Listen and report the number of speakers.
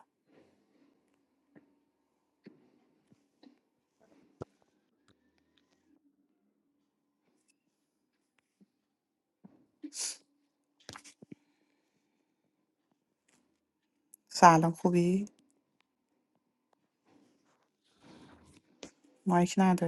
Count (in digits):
1